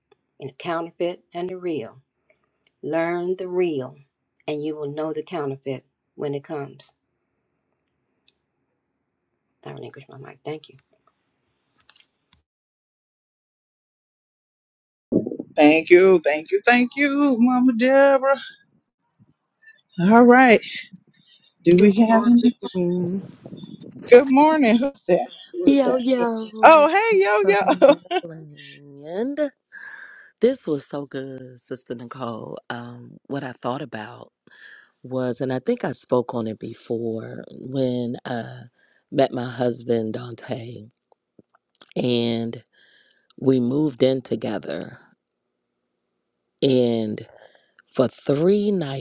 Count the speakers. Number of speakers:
3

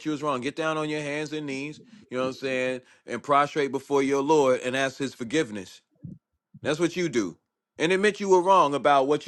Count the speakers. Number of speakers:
1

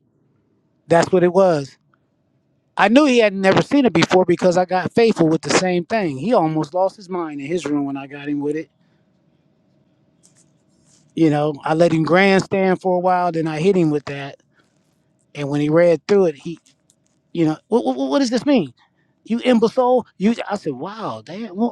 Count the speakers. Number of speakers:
1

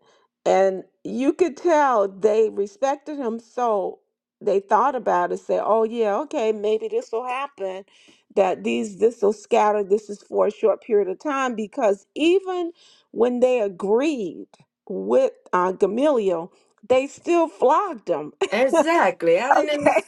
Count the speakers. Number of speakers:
2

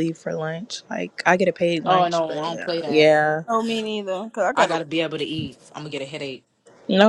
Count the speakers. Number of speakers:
3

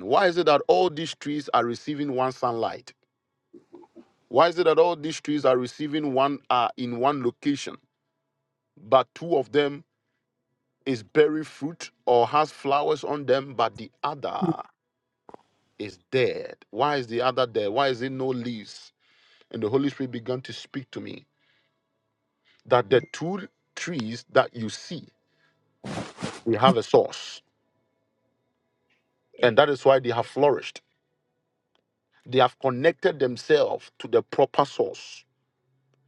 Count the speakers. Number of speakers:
1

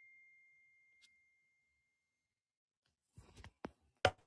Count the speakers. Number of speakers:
0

